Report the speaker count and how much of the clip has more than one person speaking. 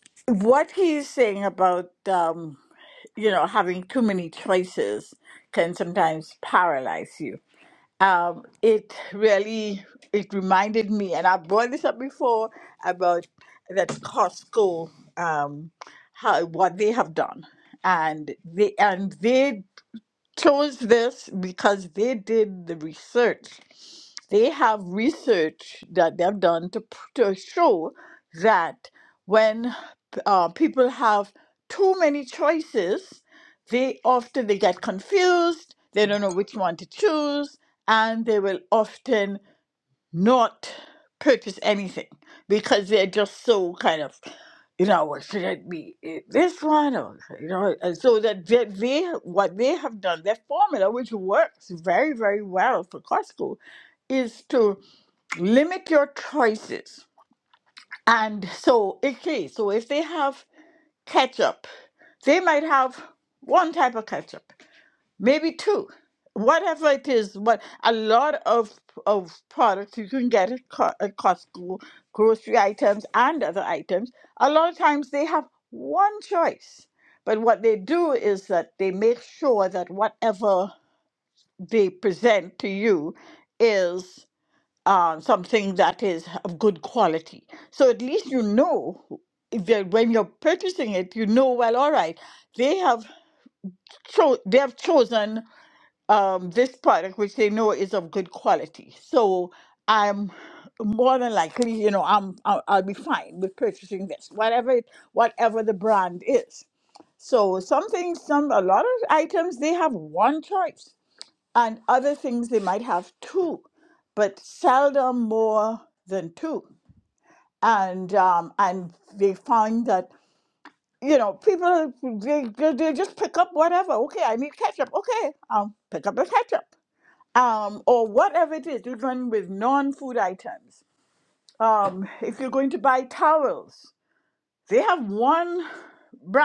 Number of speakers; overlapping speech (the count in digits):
1, no overlap